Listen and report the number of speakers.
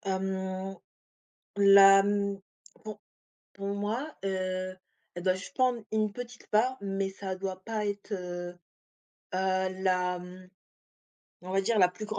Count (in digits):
1